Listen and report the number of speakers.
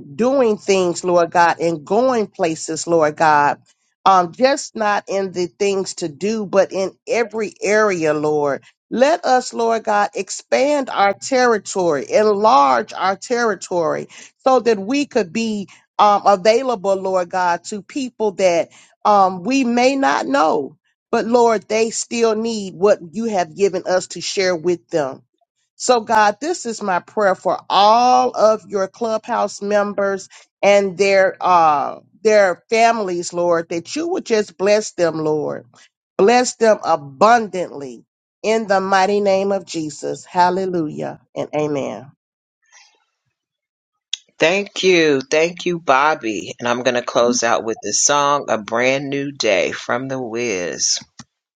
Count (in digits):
2